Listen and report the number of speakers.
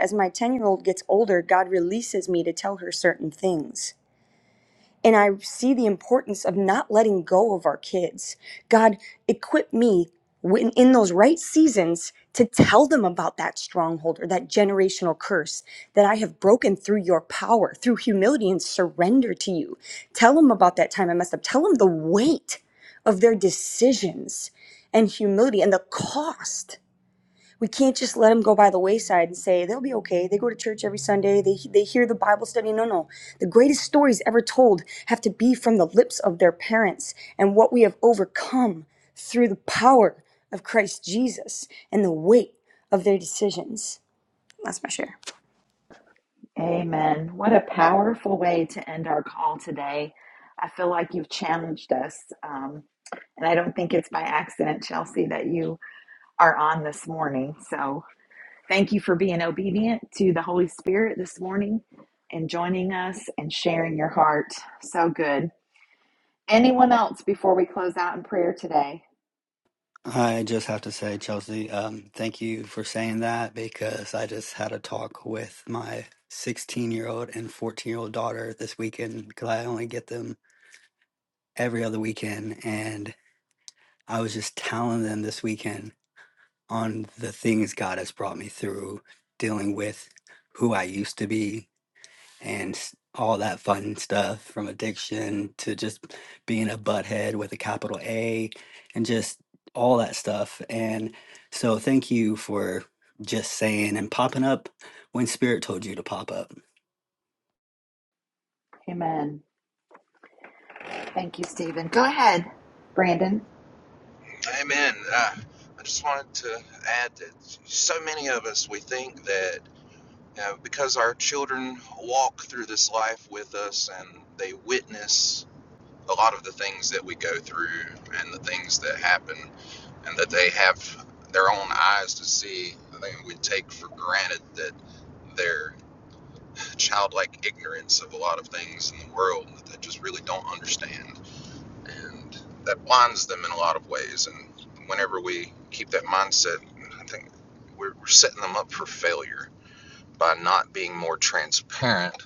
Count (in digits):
4